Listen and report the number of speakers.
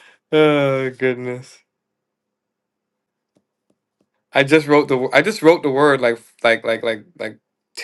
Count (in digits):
1